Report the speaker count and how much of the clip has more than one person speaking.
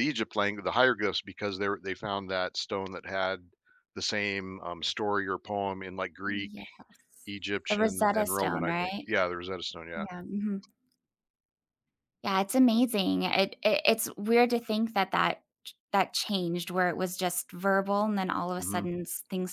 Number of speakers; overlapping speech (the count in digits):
2, about 10%